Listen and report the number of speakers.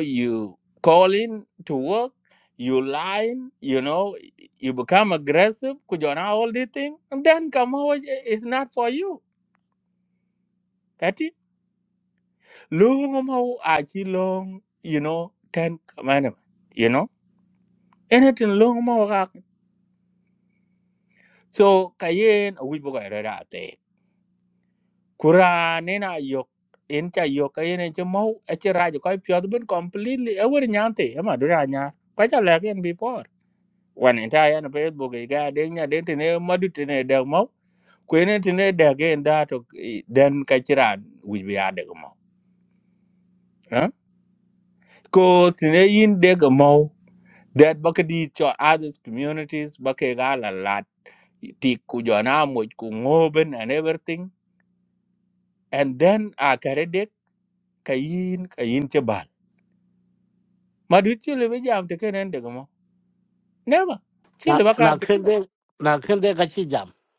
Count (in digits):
2